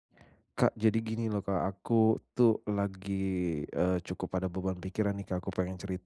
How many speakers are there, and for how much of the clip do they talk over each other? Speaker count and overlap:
1, no overlap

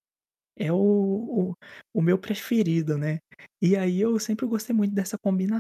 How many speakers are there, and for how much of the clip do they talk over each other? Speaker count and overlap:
1, no overlap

